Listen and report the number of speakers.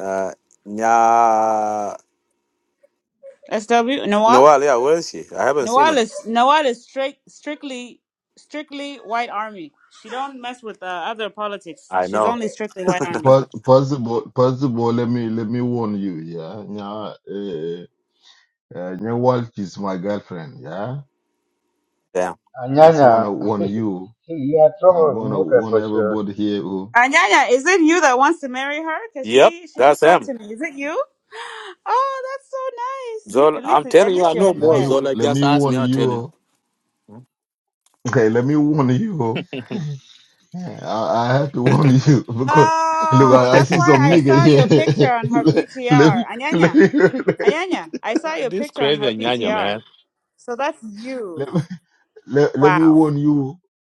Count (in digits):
4